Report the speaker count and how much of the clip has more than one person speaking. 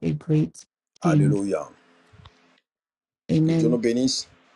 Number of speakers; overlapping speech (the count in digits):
2, about 14%